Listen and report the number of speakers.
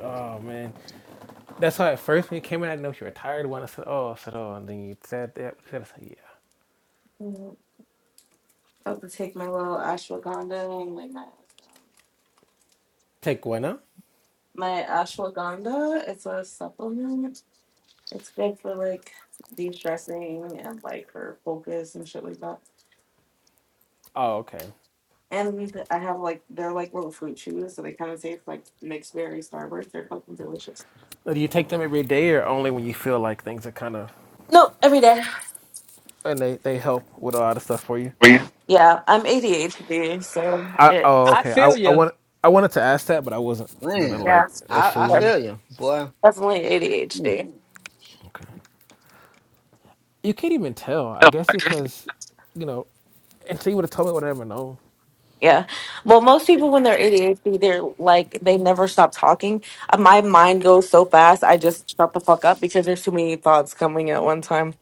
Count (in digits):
3